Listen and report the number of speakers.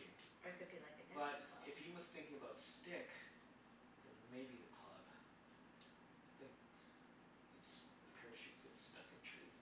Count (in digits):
2